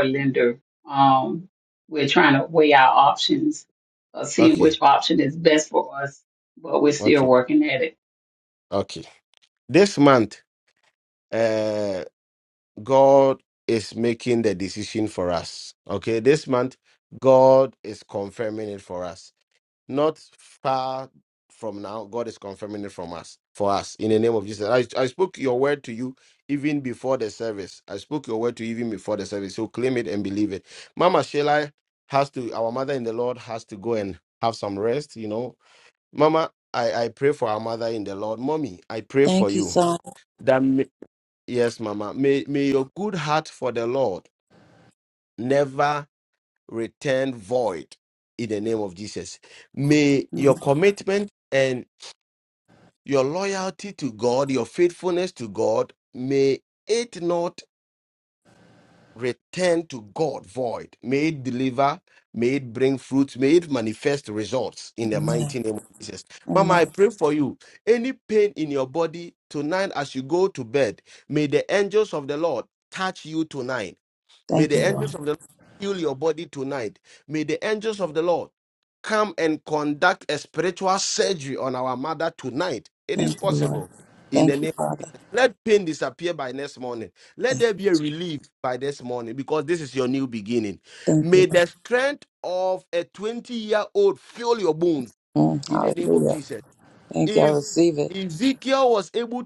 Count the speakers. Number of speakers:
three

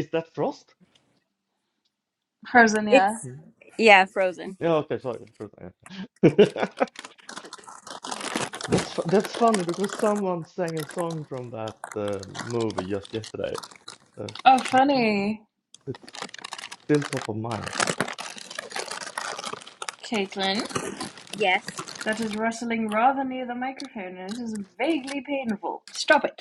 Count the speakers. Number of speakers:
three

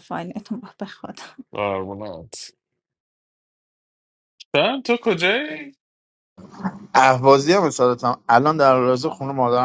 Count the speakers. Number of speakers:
three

